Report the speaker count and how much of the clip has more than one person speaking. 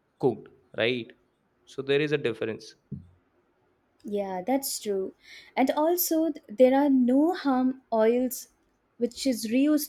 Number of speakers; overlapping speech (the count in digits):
2, no overlap